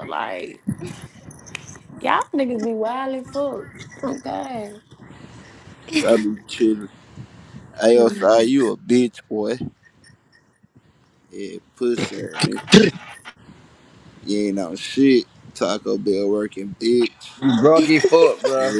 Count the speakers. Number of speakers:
three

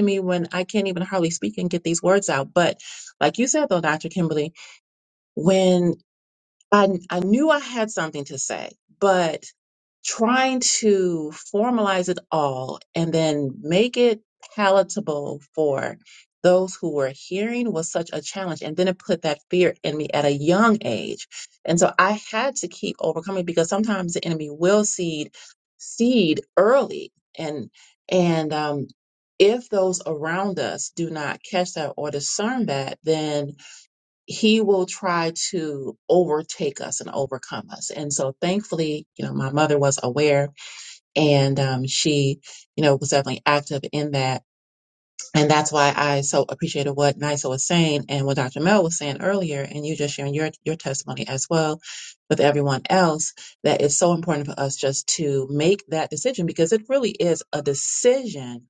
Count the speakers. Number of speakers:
one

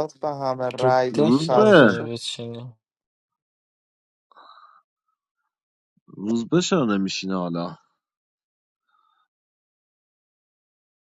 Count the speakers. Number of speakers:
three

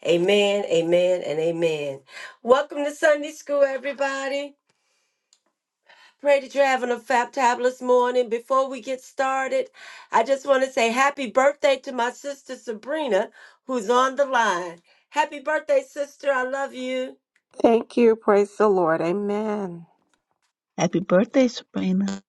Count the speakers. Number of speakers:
three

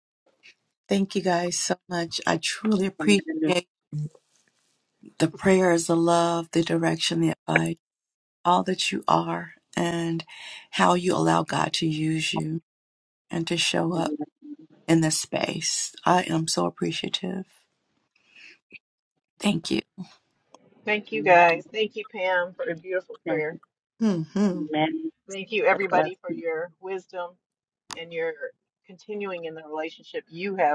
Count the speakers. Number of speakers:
three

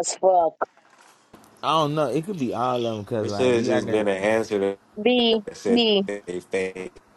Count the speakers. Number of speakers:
three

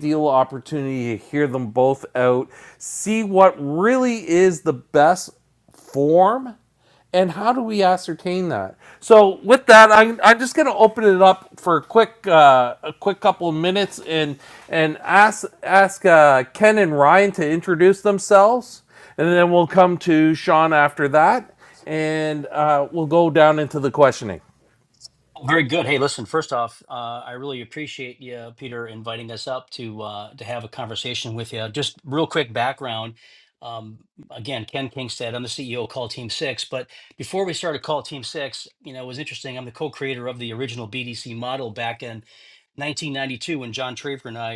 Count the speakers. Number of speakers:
two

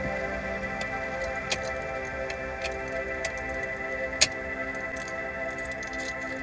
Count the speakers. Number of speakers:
zero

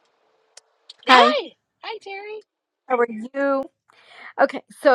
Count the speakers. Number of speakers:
two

